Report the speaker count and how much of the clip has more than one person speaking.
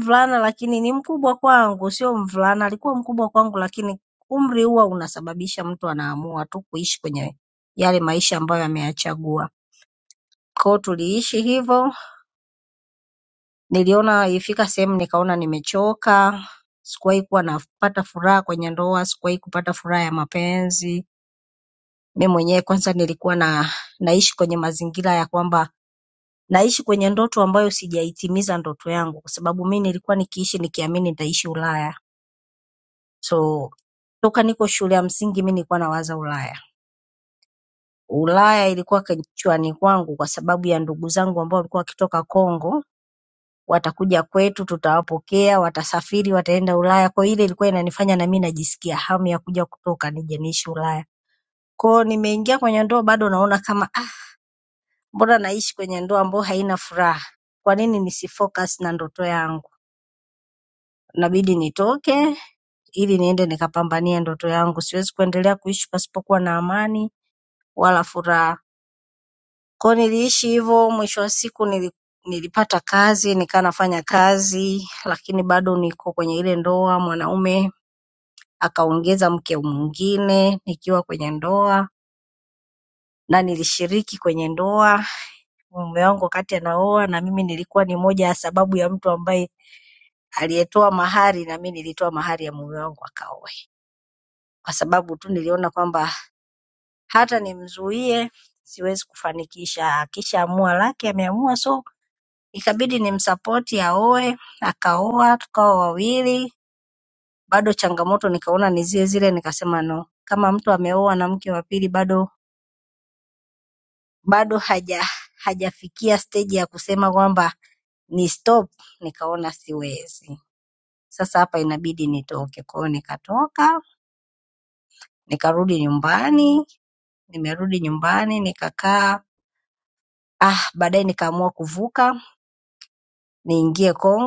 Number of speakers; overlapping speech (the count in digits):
1, no overlap